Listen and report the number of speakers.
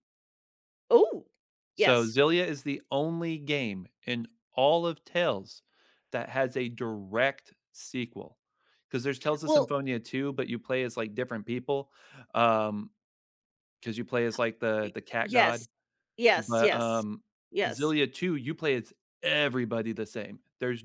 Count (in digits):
2